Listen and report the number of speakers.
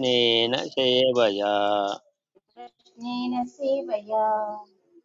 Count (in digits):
2